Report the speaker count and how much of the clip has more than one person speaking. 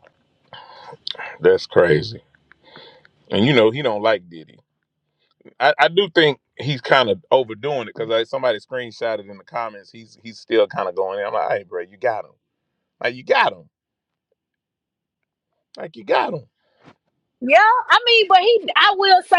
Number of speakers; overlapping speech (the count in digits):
2, no overlap